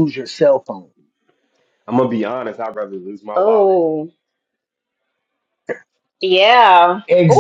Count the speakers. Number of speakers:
three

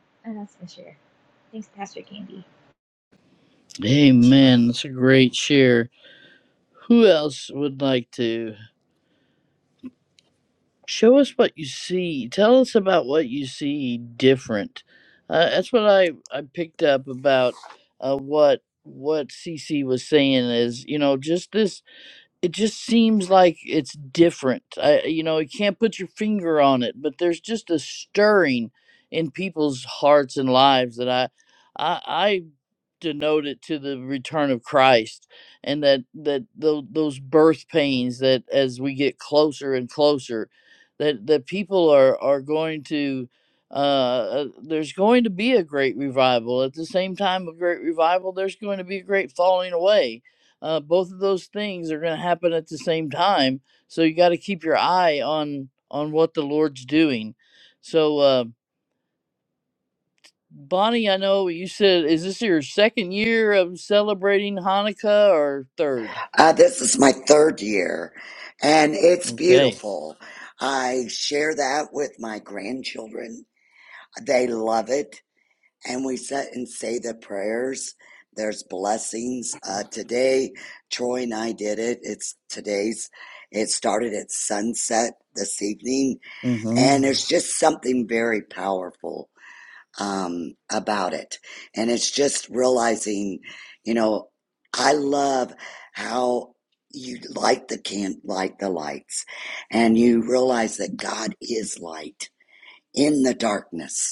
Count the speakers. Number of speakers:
three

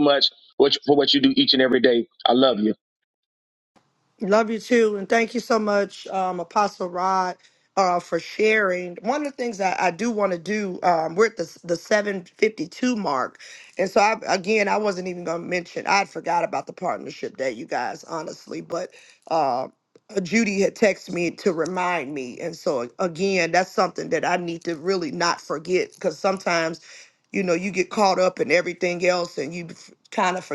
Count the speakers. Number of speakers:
two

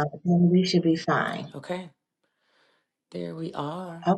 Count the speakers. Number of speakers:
two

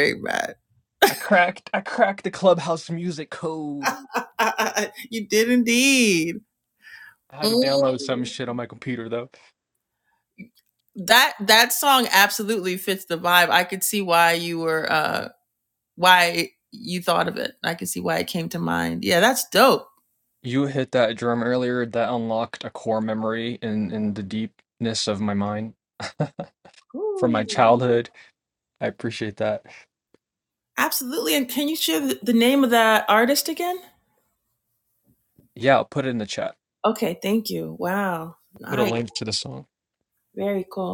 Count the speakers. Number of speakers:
two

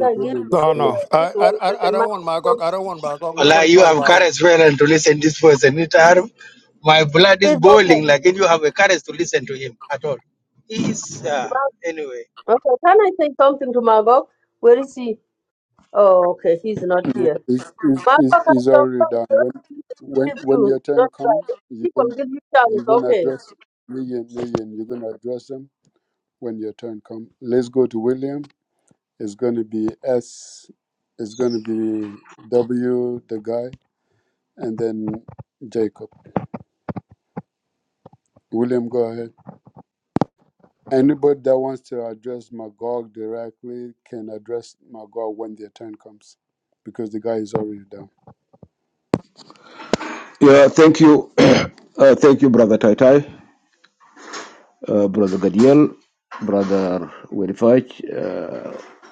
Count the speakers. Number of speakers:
five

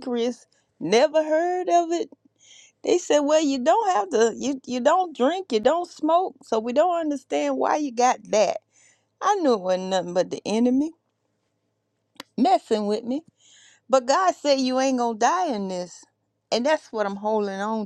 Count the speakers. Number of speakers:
one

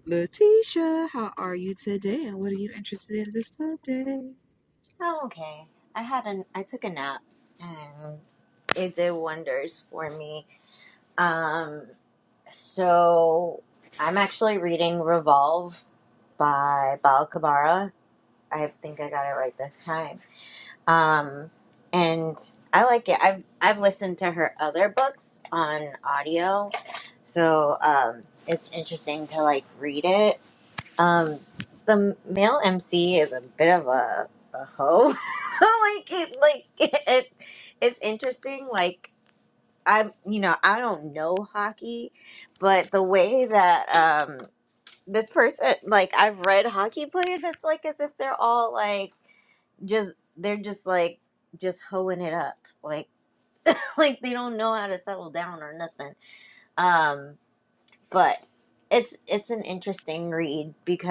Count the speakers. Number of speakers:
two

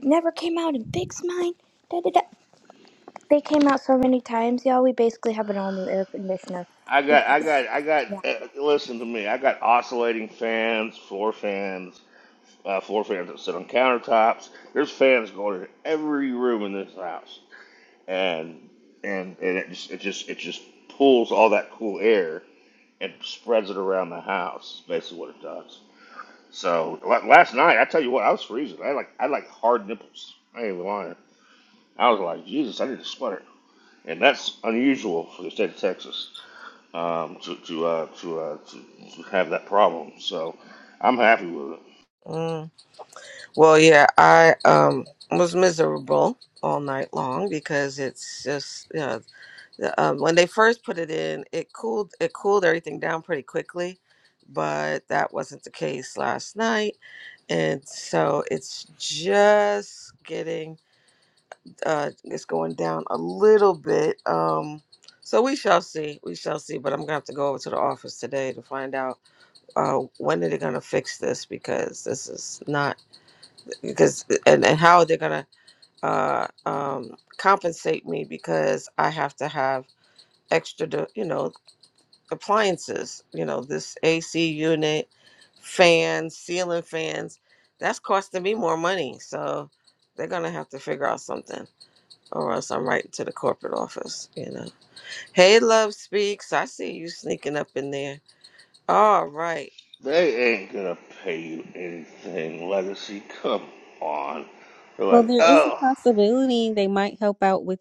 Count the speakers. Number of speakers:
four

